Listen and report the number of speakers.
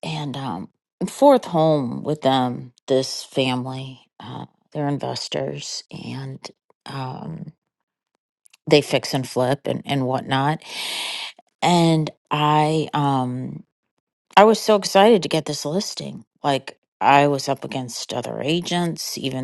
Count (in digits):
1